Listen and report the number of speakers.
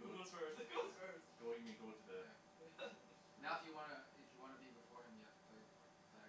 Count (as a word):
three